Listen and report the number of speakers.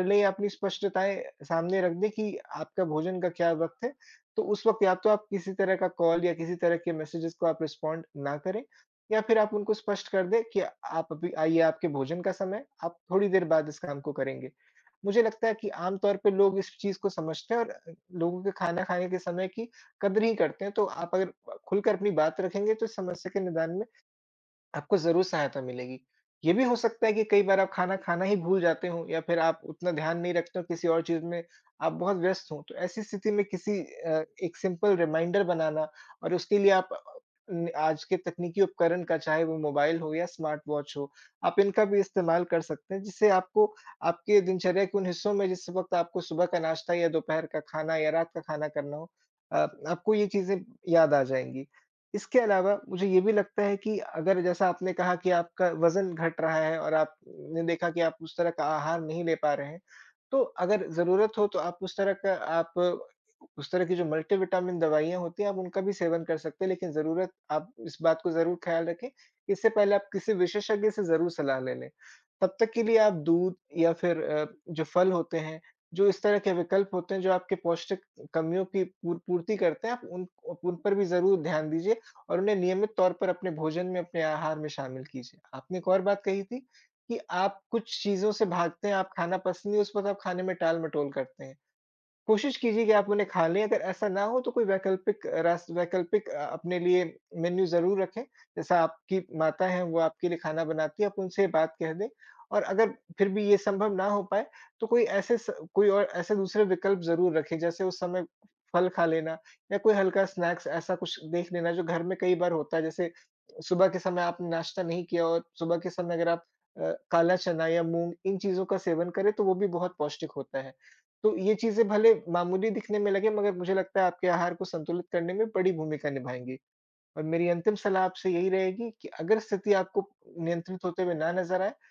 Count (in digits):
1